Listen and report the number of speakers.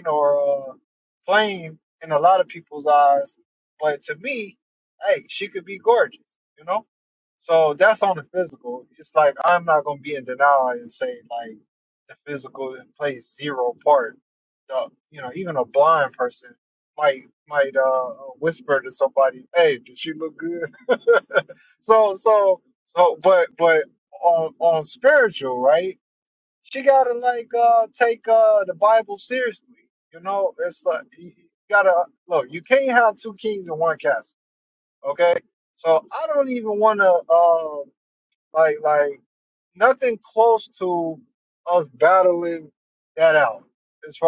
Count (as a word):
one